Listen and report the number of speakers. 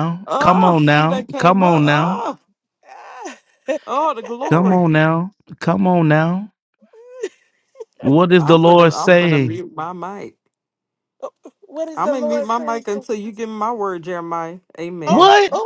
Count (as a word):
three